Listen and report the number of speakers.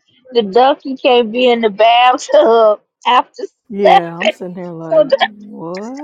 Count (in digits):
2